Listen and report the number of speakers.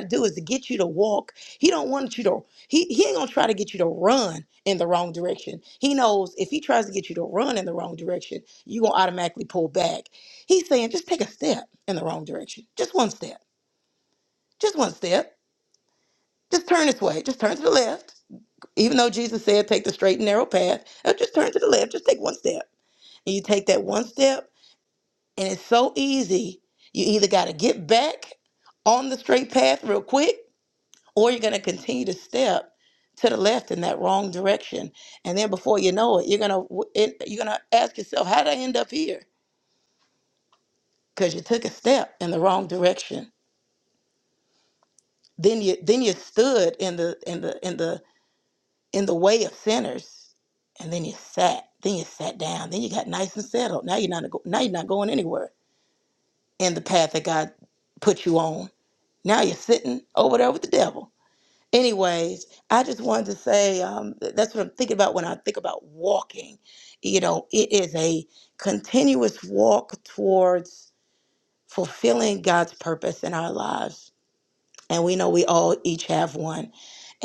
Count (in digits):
1